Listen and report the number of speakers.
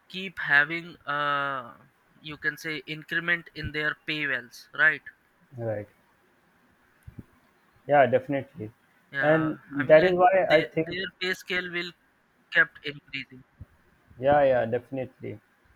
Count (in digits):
2